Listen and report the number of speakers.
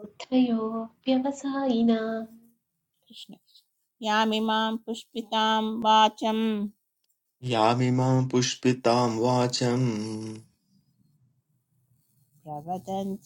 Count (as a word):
three